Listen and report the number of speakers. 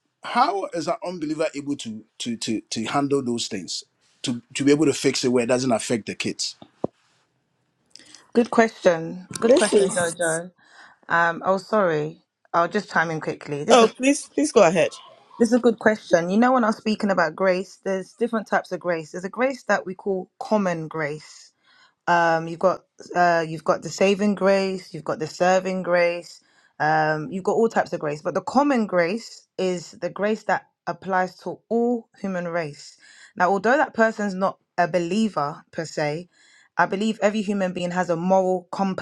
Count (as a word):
three